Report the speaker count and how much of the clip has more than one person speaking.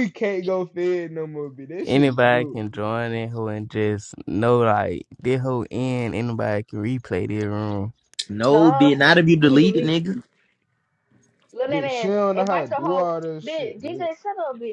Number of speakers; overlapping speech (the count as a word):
four, about 26%